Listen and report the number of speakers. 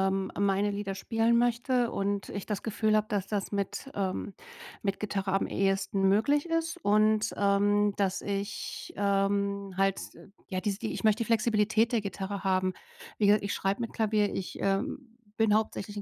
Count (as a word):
one